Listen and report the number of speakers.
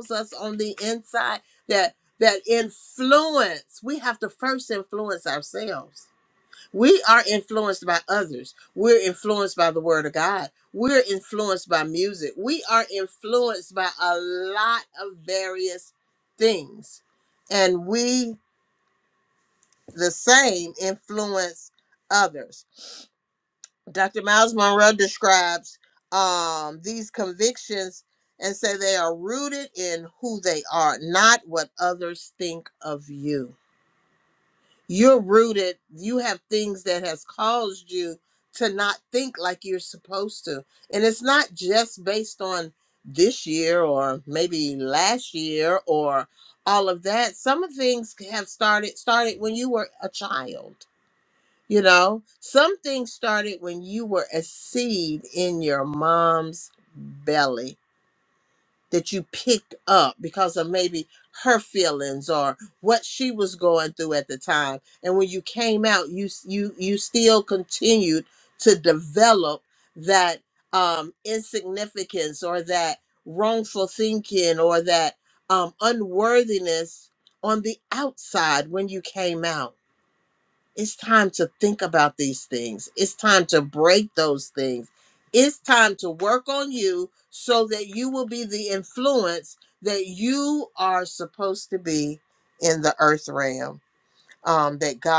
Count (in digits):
1